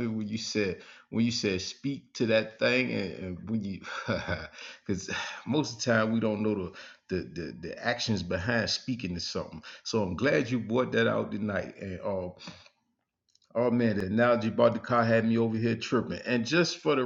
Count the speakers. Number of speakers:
1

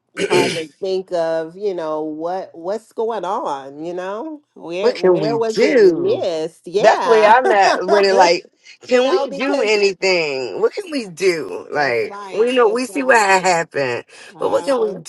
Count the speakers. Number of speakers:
2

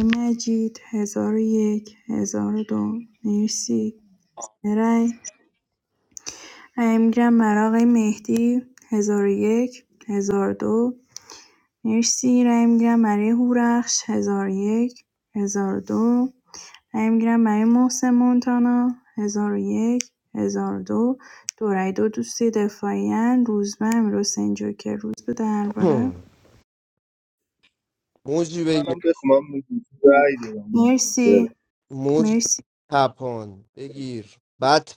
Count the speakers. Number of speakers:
3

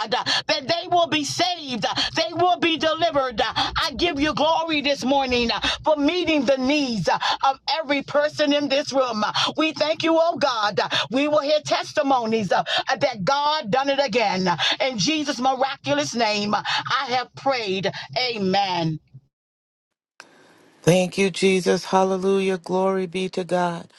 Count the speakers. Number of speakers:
2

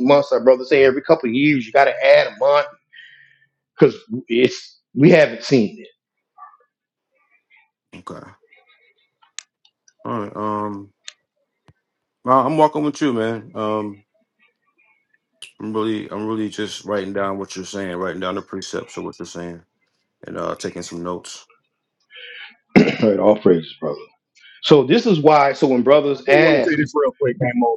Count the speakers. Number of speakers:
3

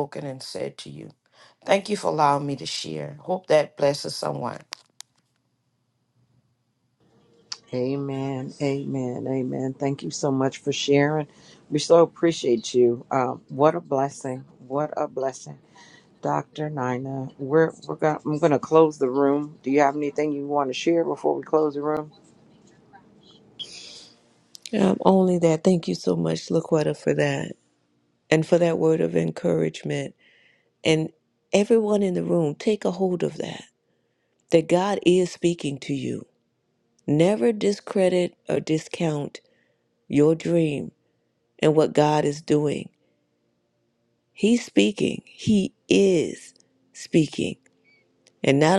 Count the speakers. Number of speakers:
3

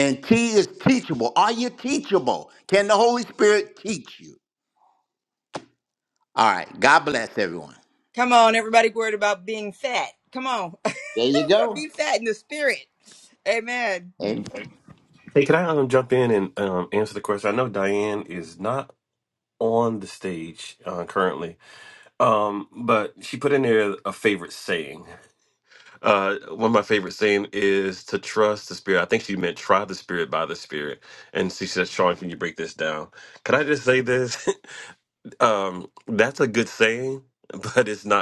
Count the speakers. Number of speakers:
3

